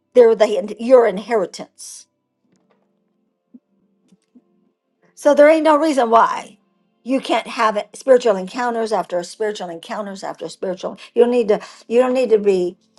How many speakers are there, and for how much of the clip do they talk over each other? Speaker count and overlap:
1, no overlap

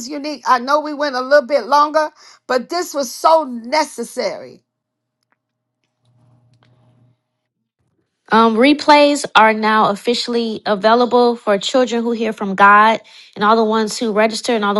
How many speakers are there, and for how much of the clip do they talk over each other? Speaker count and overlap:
2, no overlap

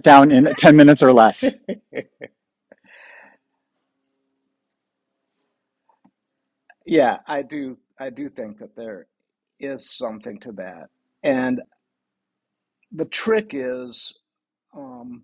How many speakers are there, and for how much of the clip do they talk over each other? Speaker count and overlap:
2, no overlap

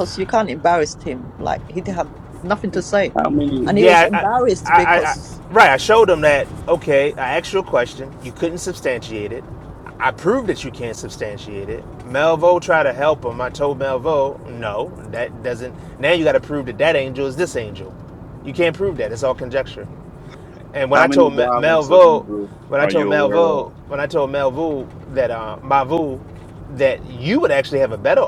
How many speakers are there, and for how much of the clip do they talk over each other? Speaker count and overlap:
3, about 11%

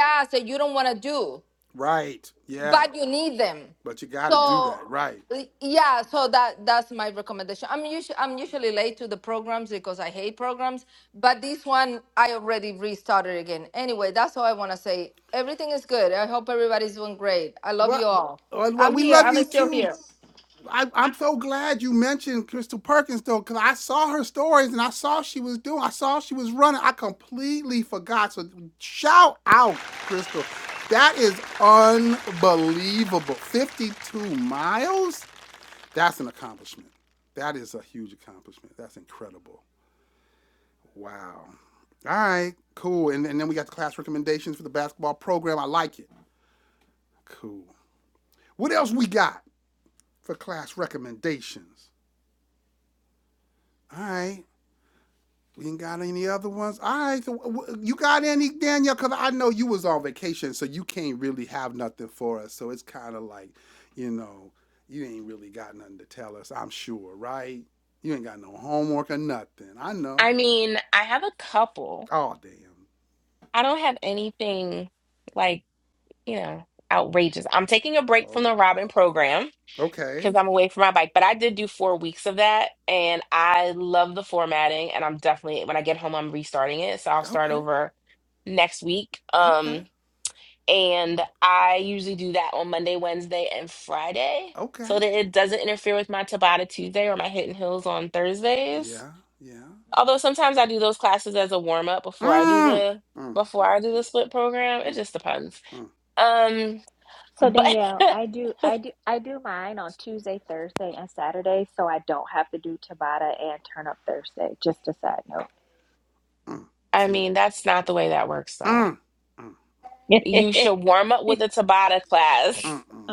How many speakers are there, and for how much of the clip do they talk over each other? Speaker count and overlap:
4, about 5%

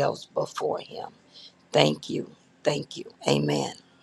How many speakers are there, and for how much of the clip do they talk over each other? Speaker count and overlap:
1, no overlap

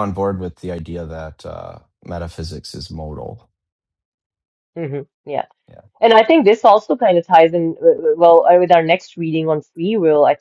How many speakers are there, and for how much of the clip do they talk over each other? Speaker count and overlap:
2, no overlap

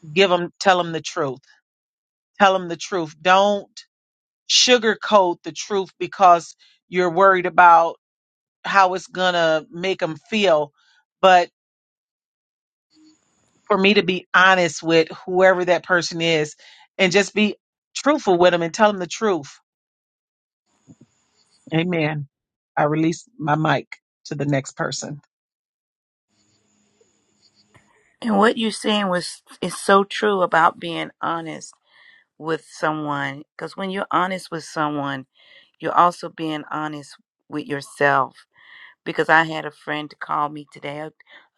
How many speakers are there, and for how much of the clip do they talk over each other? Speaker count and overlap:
2, no overlap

